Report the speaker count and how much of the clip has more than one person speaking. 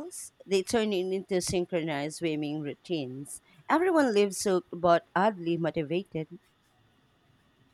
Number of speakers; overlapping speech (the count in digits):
1, no overlap